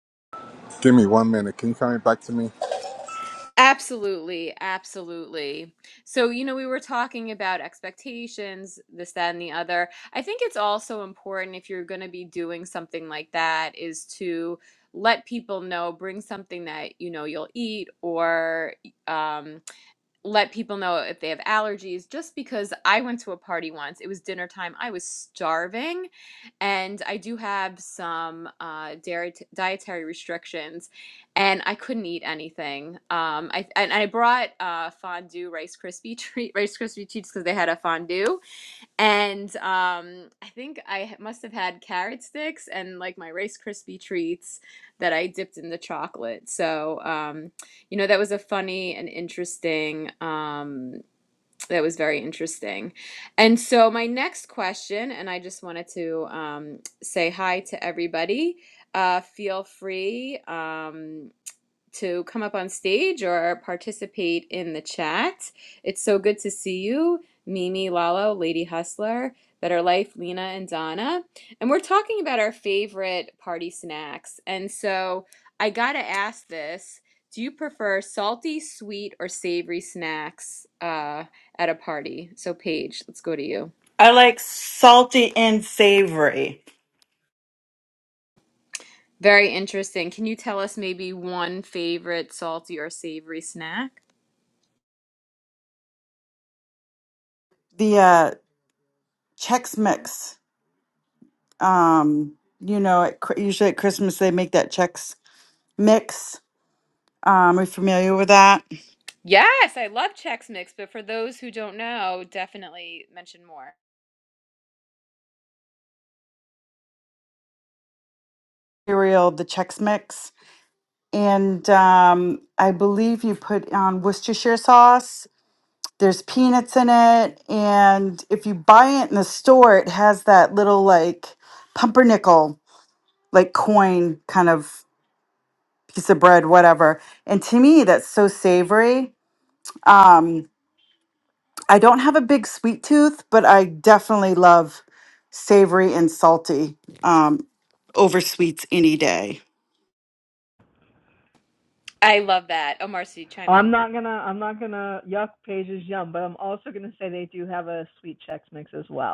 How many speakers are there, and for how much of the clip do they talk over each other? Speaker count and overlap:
four, under 1%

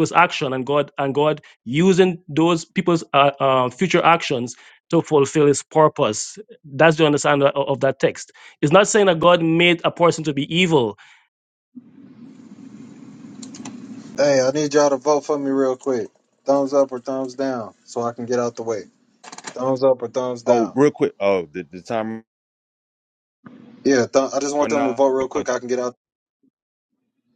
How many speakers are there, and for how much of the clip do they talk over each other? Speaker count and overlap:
three, about 2%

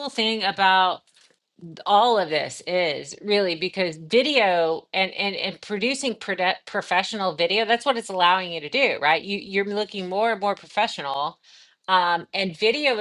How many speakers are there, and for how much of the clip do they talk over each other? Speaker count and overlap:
one, no overlap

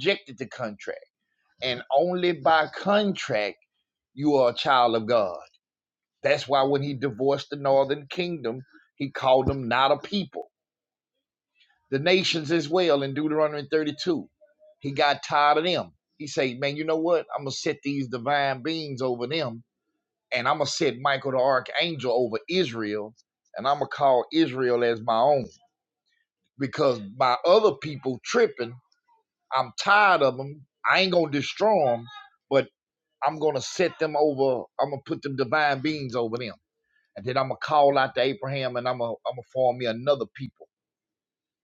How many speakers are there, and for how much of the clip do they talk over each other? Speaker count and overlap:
one, no overlap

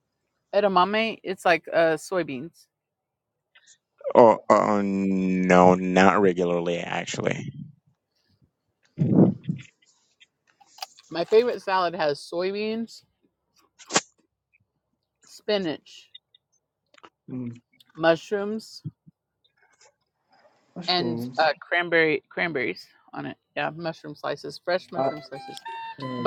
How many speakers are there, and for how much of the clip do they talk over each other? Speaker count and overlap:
three, about 3%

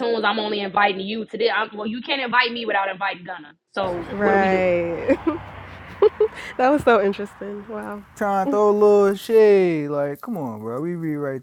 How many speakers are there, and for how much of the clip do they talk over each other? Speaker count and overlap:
three, about 6%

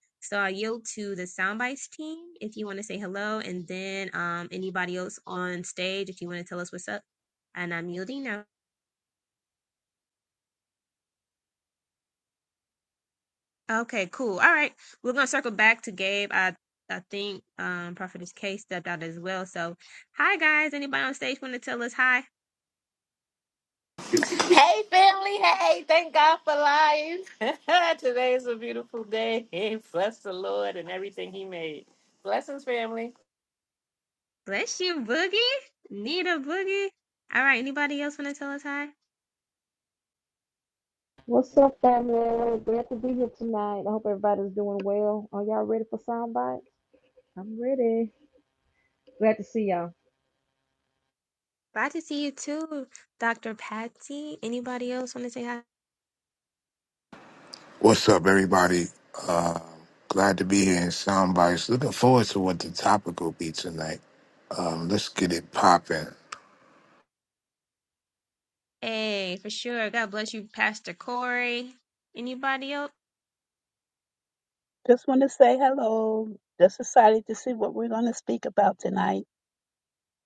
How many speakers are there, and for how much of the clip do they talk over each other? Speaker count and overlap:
five, no overlap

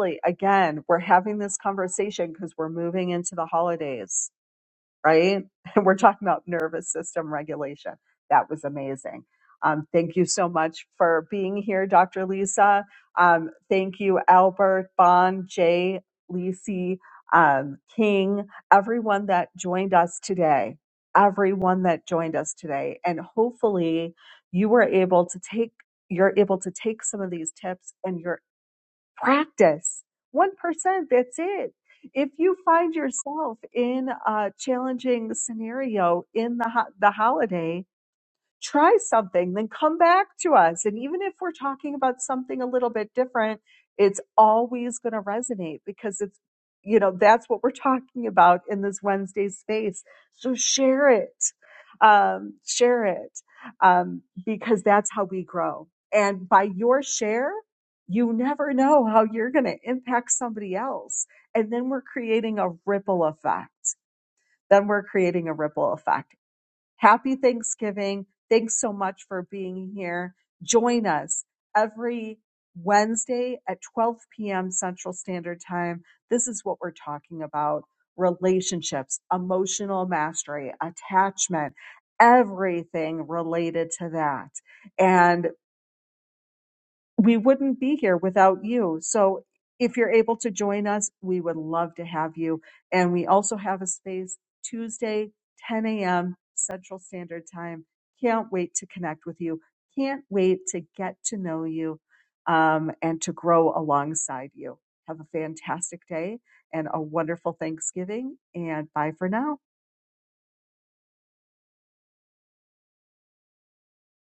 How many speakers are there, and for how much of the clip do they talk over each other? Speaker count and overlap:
one, no overlap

